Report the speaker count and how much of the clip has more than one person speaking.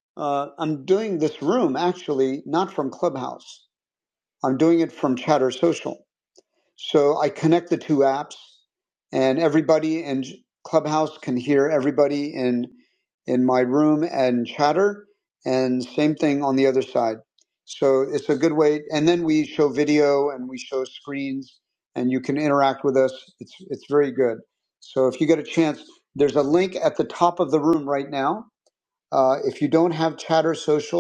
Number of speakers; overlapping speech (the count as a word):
one, no overlap